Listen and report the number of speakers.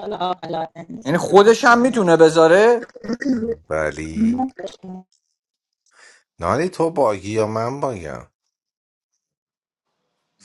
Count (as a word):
three